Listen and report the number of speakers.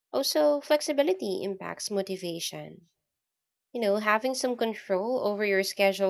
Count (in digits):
1